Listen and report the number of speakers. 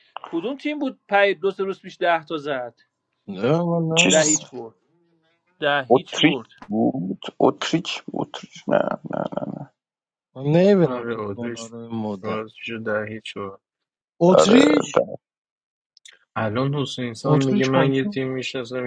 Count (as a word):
four